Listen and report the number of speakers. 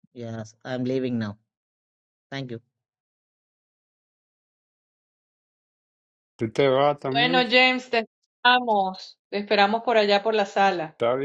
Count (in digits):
3